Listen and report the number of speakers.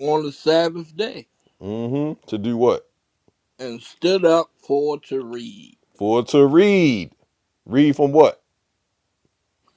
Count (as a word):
two